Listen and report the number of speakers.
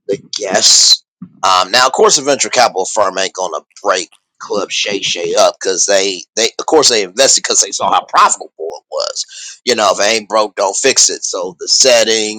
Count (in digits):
1